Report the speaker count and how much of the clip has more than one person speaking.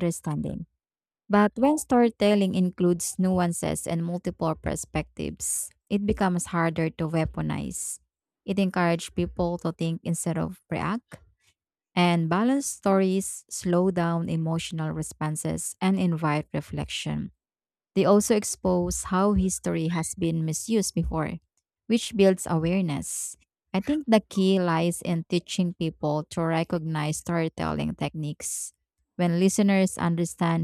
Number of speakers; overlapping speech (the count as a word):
one, no overlap